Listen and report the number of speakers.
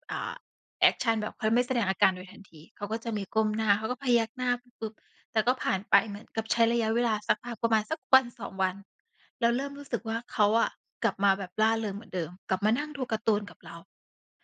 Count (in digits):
1